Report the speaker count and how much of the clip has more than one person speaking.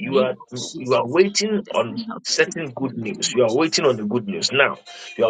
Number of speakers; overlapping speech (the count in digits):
1, no overlap